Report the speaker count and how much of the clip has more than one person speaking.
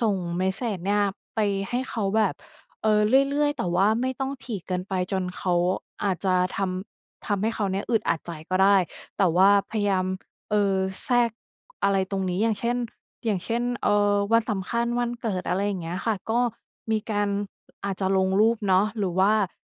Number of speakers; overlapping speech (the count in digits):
1, no overlap